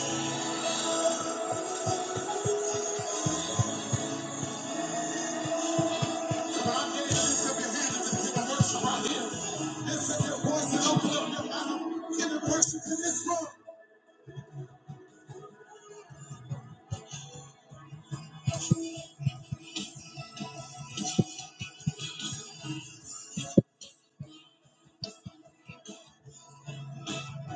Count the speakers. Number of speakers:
0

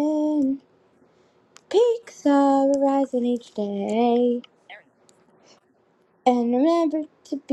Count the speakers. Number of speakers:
1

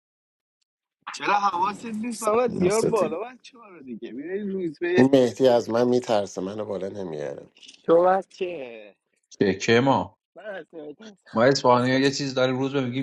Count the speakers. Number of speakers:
3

